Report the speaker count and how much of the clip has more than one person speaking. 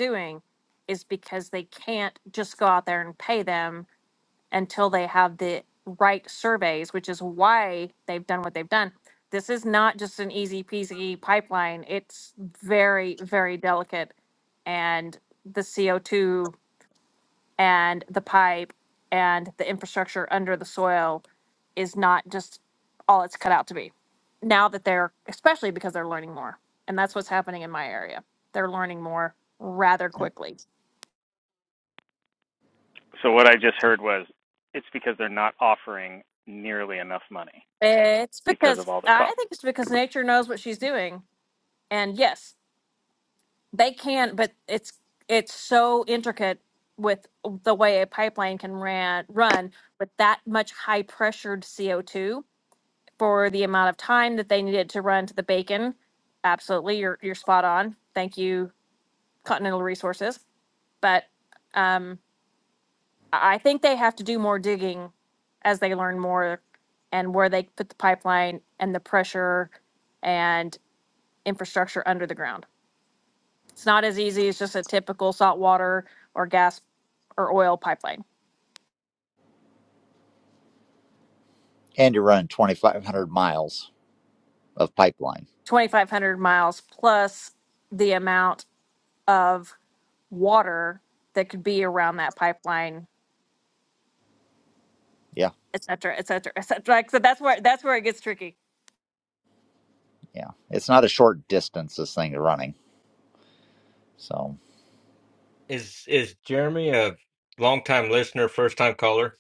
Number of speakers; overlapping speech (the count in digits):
4, about 1%